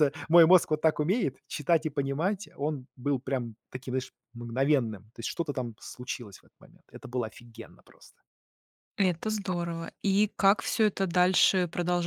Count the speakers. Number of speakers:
2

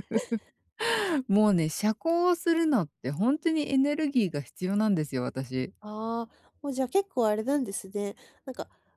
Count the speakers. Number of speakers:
2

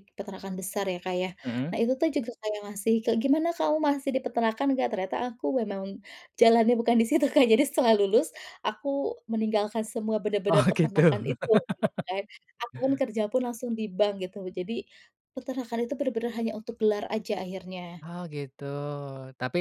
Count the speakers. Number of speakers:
2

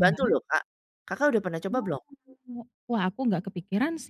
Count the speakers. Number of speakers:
2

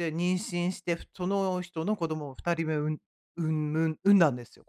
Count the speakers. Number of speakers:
1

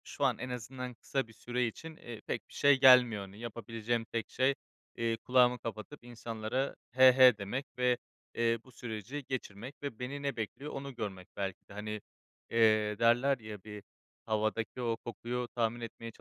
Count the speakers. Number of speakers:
1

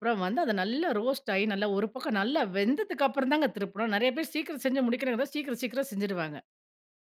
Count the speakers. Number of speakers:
1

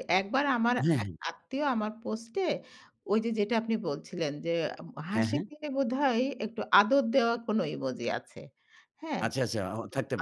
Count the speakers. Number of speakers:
2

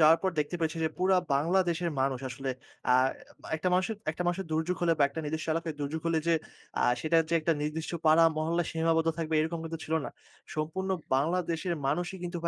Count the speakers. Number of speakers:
1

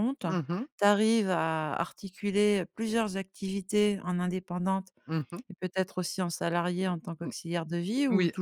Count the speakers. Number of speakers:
2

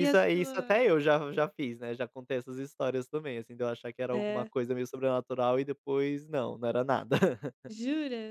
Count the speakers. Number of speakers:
2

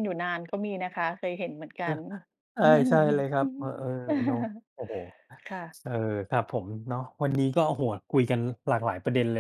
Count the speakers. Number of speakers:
2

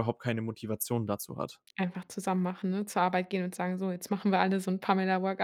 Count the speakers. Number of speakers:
2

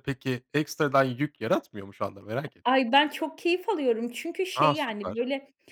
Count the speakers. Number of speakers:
2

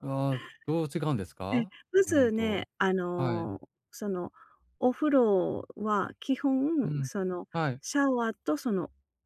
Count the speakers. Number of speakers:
2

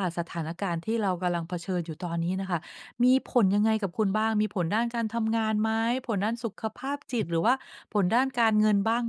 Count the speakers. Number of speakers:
1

